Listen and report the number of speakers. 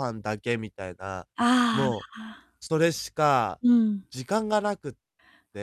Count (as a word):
two